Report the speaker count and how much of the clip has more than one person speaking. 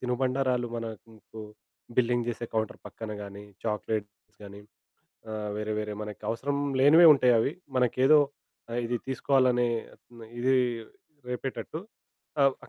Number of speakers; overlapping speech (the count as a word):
one, no overlap